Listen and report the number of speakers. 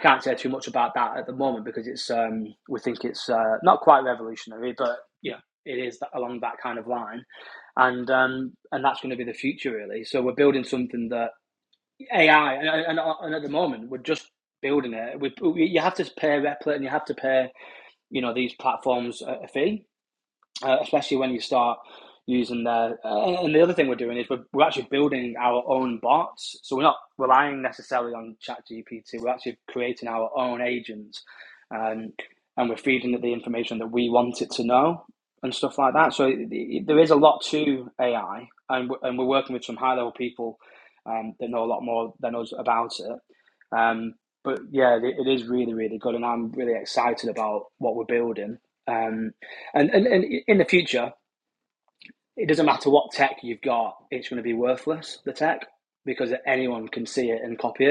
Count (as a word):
one